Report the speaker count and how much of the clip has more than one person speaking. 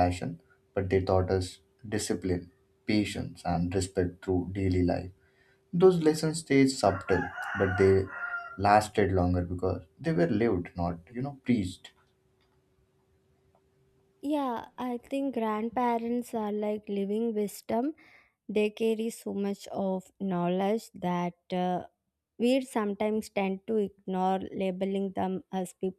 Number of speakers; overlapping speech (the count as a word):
two, no overlap